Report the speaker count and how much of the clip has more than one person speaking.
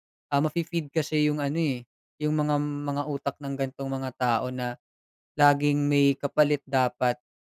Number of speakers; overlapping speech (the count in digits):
1, no overlap